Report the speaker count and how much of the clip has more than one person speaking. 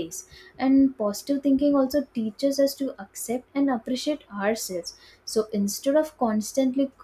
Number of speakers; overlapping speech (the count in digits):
1, no overlap